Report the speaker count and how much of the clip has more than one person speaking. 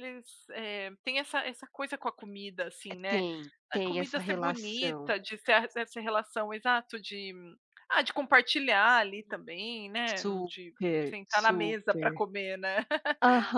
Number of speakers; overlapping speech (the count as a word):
two, about 20%